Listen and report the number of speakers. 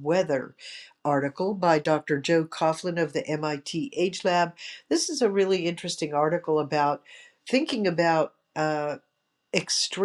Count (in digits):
1